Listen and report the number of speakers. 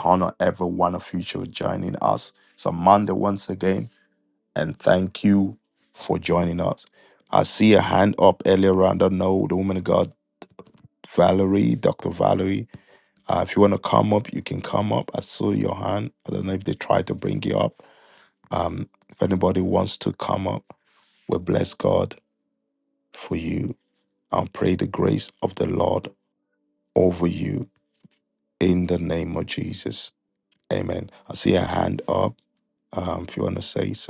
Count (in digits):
1